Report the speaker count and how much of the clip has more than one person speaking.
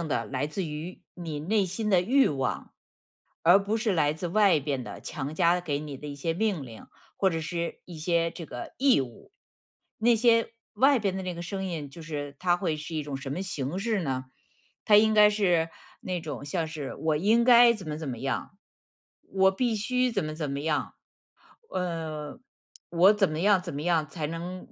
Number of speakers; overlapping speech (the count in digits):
1, no overlap